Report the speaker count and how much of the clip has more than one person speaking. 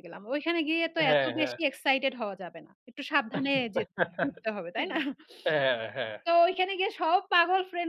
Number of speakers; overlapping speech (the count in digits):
2, about 8%